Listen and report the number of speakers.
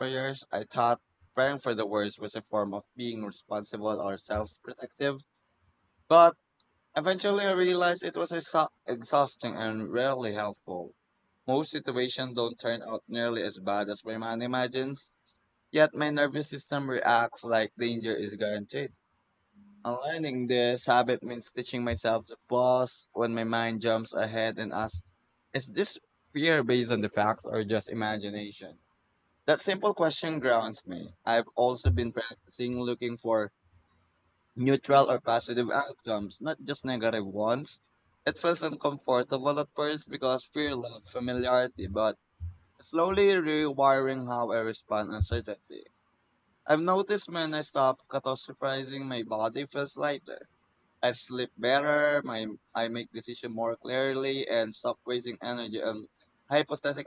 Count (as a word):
one